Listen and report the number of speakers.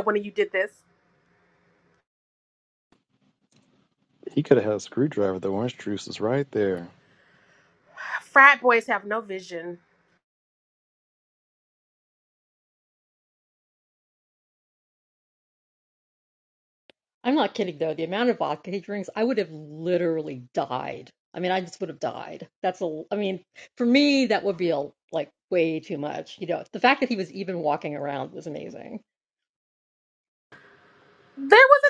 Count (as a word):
three